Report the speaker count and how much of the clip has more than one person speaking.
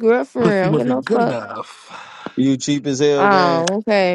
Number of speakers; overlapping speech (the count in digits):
3, about 35%